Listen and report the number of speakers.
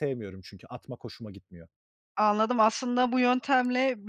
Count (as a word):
two